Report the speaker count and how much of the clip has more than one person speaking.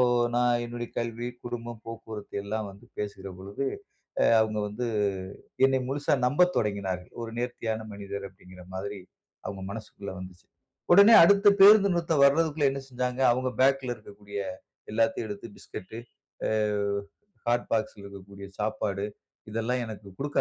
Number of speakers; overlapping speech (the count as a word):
one, no overlap